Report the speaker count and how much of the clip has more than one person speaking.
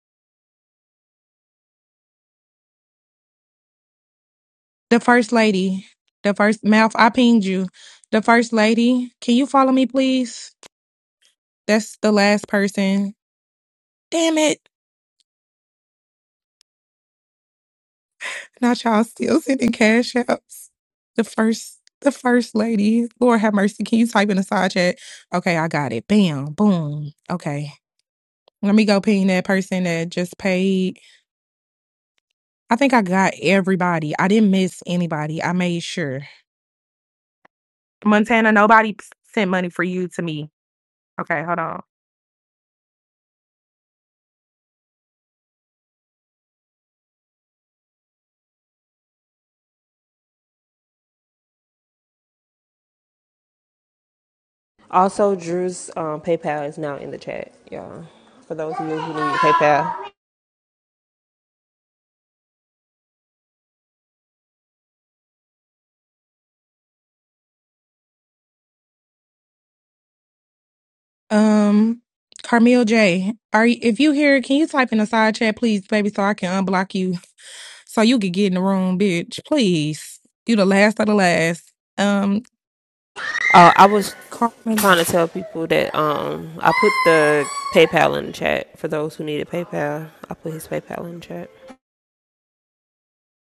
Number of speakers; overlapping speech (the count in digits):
2, under 1%